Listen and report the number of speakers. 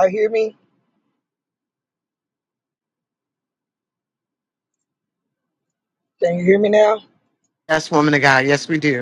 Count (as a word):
two